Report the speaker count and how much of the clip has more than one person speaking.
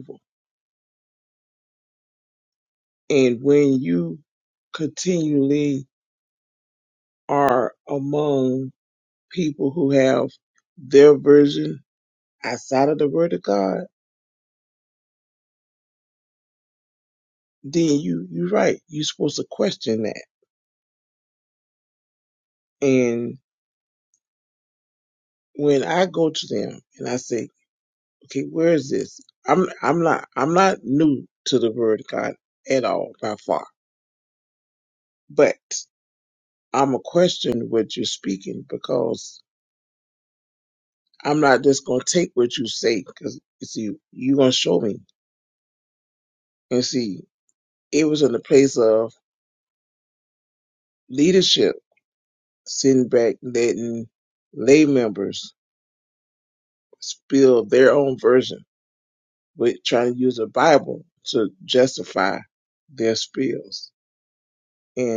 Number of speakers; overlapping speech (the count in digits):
1, no overlap